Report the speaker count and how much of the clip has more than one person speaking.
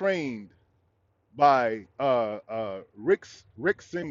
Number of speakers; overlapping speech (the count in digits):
1, no overlap